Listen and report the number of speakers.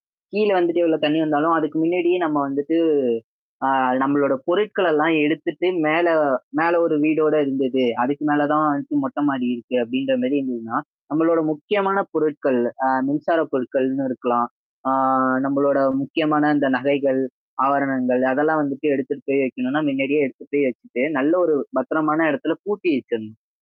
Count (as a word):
one